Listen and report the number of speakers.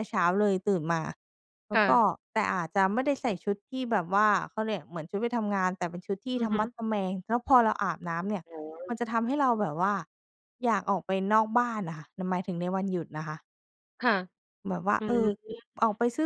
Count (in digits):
2